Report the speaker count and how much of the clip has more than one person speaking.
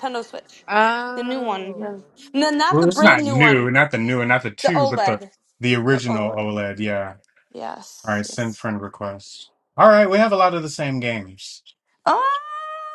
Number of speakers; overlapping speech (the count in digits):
3, about 21%